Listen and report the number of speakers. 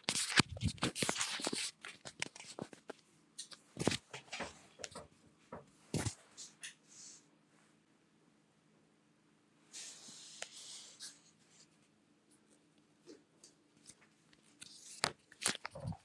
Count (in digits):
0